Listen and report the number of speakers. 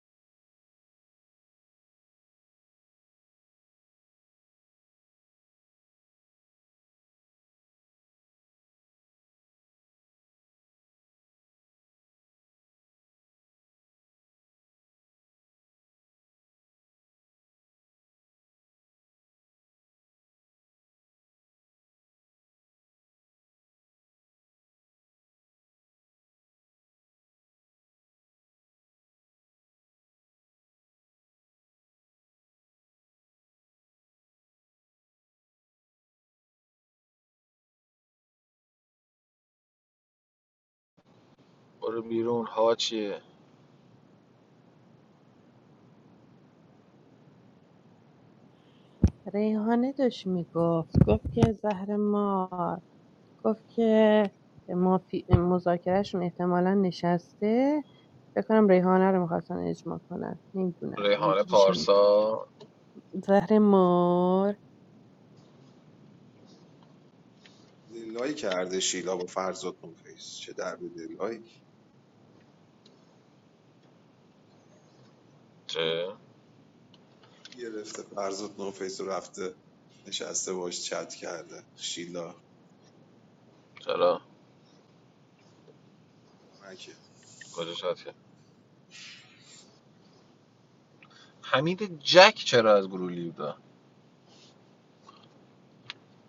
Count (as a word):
three